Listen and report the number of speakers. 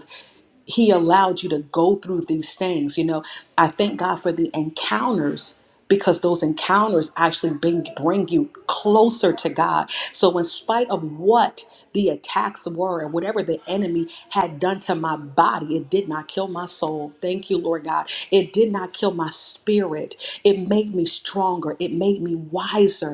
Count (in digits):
1